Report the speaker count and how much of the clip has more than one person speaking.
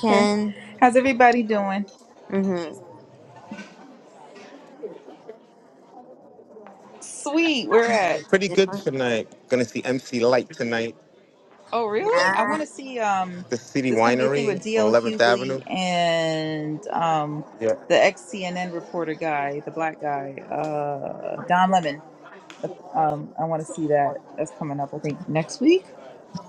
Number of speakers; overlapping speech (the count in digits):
3, about 10%